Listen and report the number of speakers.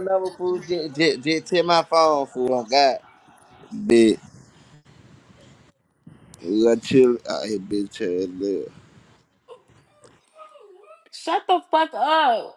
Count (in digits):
3